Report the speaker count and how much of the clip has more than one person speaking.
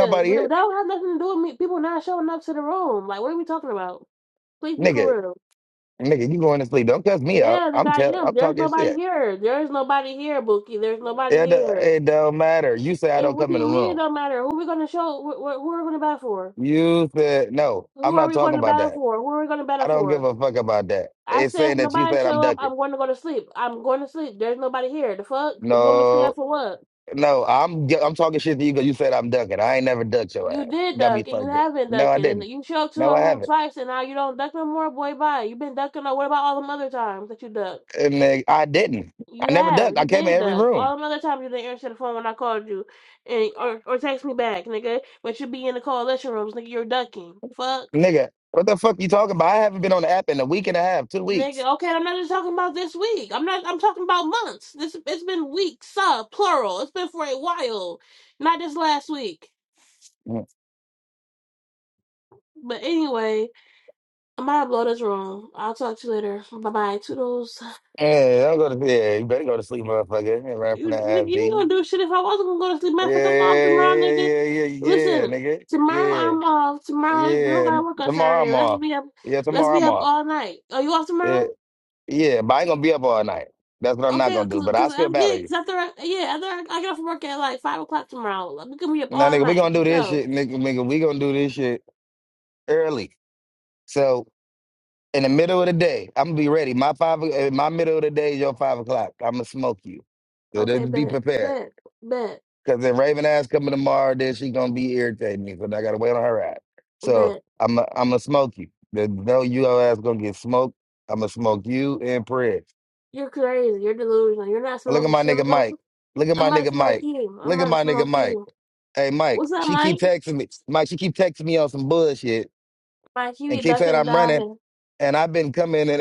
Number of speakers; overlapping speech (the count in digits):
2, about 20%